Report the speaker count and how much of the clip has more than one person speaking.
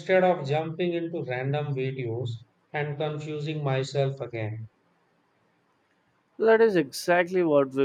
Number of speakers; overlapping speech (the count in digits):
2, no overlap